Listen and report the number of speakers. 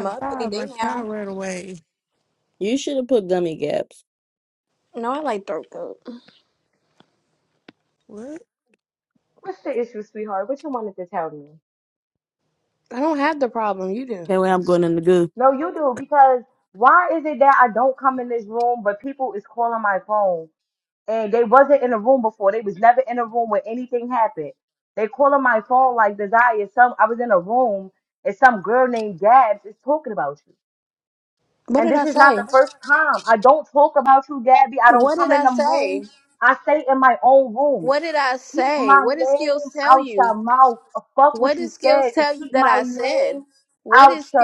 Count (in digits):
4